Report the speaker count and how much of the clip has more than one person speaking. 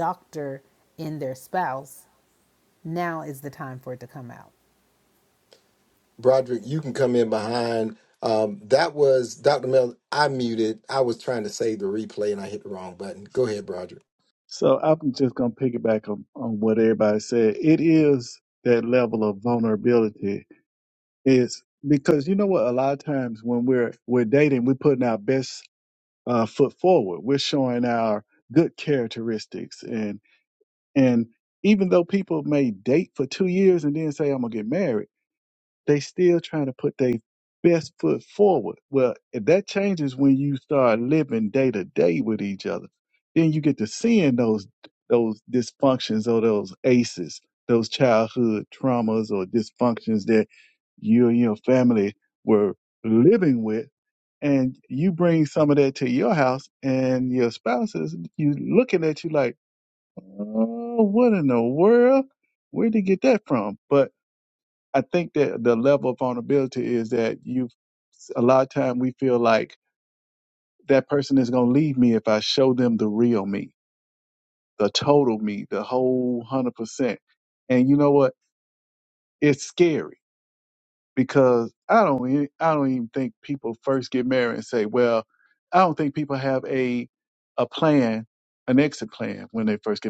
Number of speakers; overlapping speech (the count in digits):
3, no overlap